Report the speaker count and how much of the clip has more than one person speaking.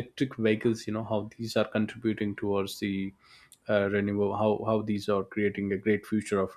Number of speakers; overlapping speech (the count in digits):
1, no overlap